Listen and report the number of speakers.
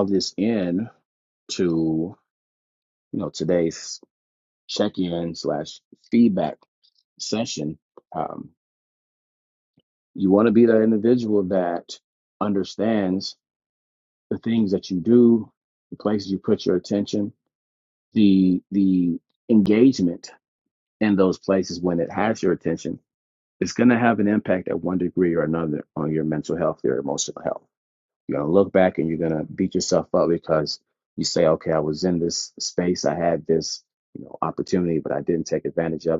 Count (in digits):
1